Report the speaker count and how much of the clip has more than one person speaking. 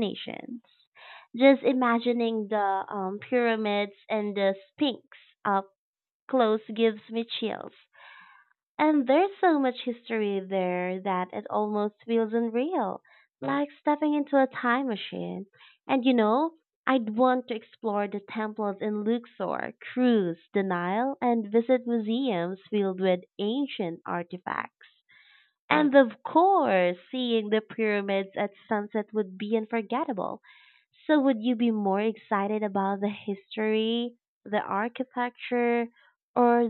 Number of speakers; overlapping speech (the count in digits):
1, no overlap